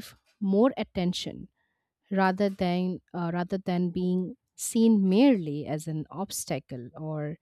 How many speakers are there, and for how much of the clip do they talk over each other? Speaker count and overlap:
1, no overlap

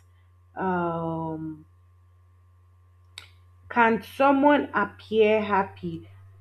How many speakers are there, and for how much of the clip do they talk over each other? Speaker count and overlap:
1, no overlap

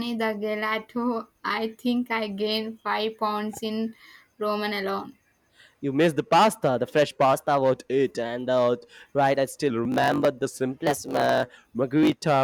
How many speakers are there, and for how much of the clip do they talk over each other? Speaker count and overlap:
2, no overlap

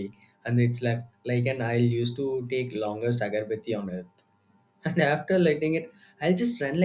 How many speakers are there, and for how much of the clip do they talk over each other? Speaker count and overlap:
1, no overlap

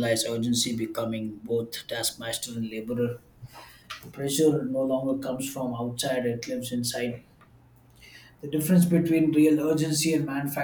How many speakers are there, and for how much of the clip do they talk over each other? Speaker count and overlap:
1, no overlap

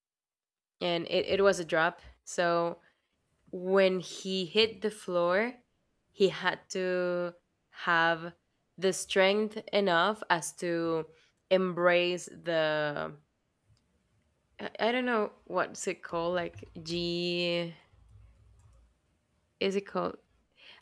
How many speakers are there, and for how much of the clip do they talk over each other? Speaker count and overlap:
1, no overlap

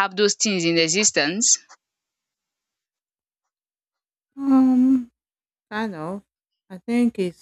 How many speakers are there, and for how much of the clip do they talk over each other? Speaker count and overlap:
2, no overlap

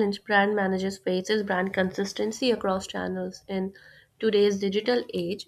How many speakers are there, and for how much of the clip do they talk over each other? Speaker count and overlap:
1, no overlap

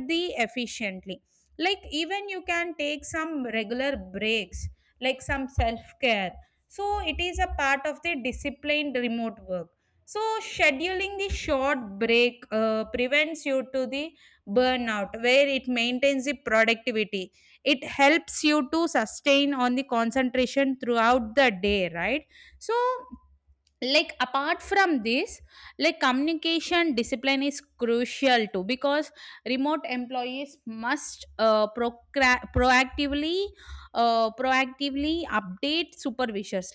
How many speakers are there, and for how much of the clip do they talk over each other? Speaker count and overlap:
1, no overlap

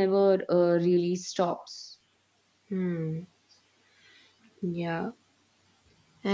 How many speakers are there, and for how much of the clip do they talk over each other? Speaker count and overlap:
2, no overlap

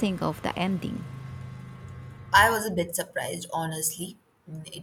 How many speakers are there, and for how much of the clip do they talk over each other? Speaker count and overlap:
2, no overlap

